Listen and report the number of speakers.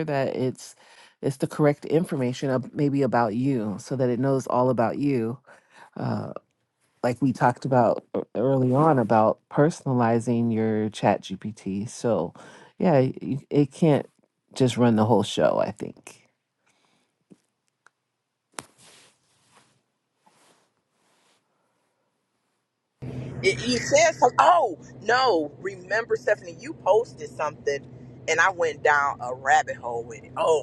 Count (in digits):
2